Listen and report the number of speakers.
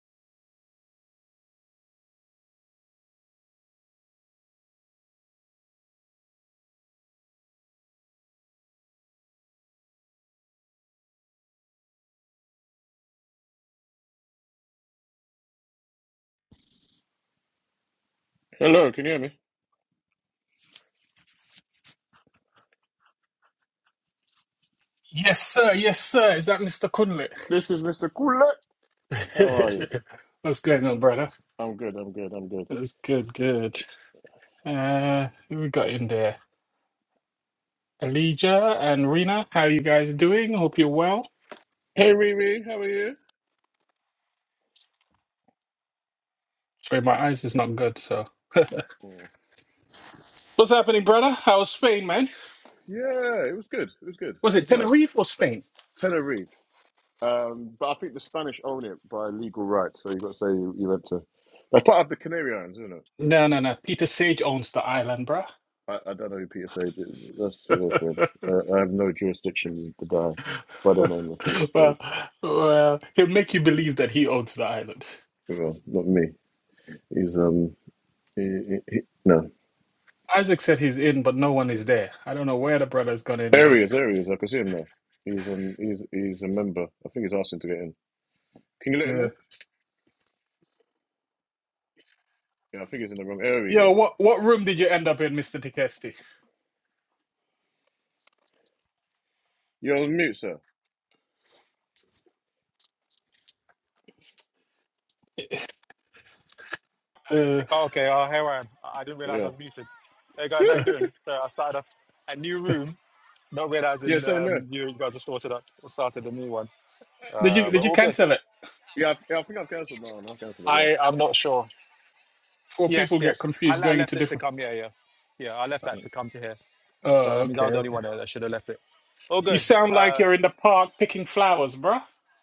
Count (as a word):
three